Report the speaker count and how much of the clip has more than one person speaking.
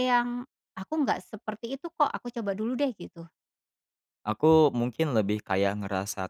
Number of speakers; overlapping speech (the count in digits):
2, no overlap